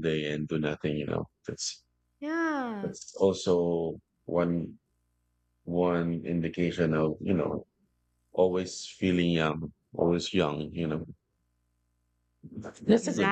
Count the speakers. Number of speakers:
two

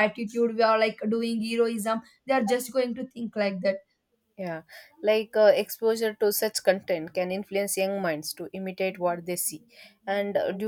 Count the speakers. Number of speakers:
two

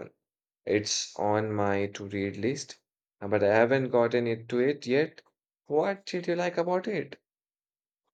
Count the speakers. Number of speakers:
one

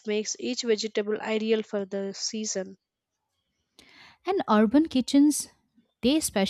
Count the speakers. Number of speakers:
two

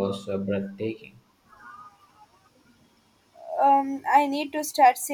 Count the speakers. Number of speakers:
two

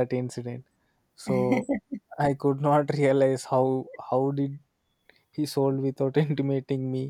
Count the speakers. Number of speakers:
one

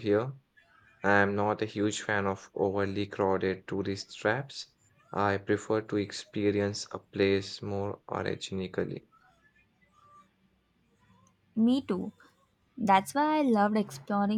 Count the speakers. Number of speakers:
two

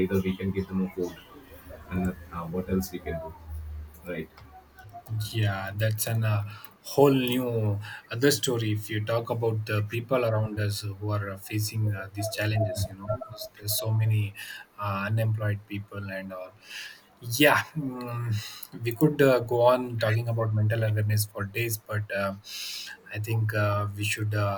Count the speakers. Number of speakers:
two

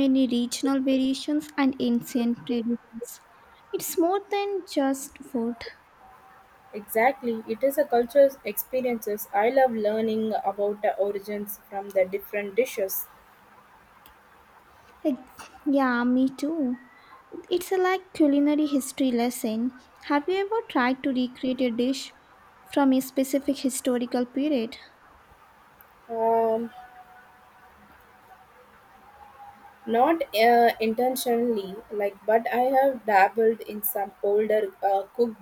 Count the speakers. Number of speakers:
two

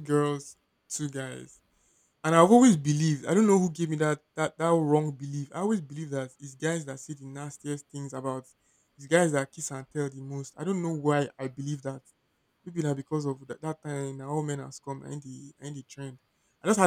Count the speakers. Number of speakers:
one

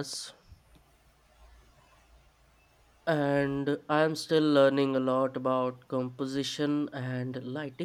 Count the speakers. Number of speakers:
one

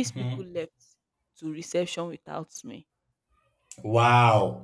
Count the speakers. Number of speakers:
two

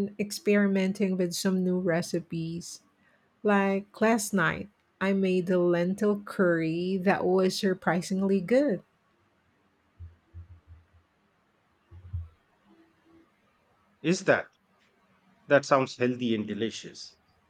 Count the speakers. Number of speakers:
two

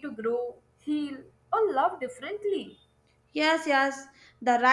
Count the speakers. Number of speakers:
two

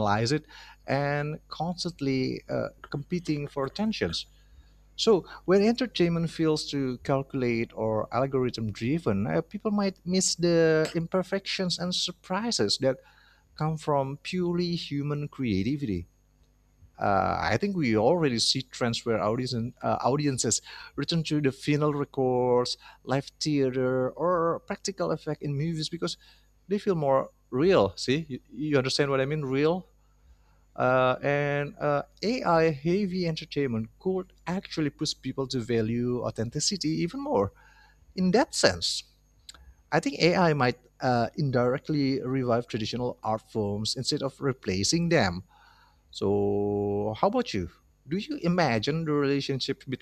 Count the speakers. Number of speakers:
one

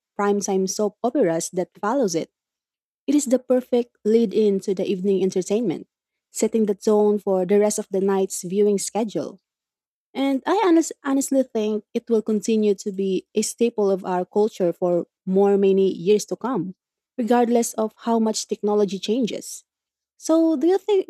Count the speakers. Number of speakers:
one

